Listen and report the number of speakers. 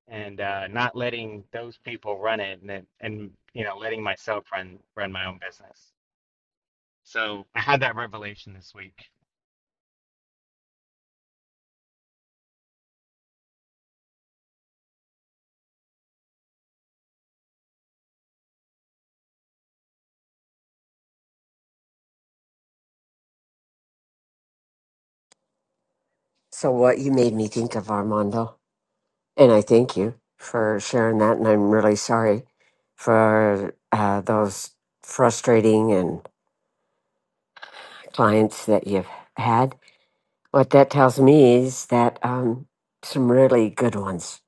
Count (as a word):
two